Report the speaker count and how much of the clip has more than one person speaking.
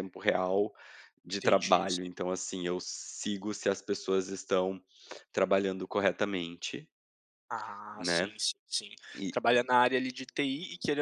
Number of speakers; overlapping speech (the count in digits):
2, about 8%